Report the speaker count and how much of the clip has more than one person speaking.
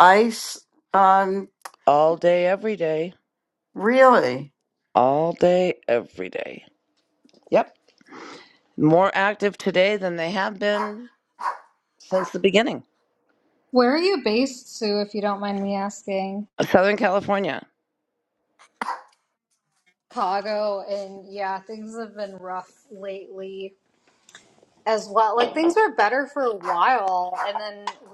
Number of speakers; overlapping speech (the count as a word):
three, no overlap